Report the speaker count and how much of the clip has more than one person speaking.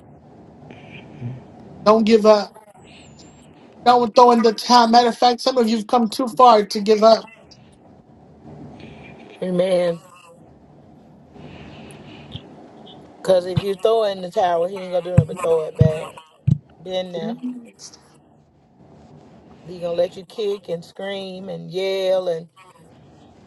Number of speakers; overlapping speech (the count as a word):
two, no overlap